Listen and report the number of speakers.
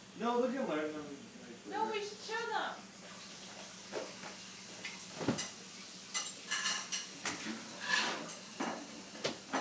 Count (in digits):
2